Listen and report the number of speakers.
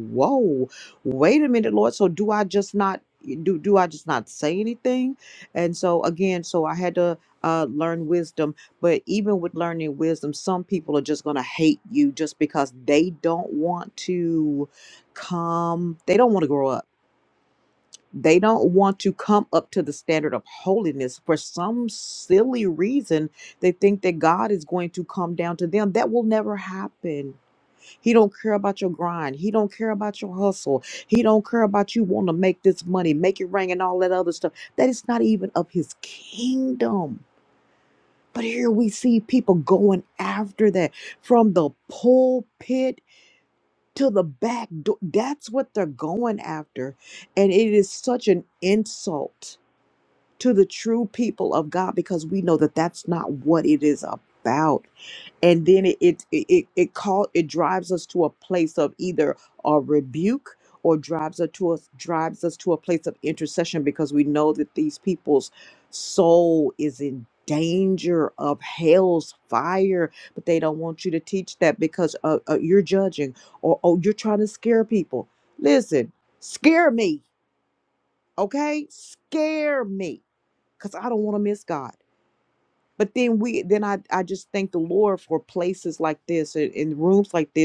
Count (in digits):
1